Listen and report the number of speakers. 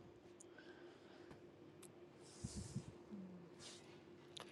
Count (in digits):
0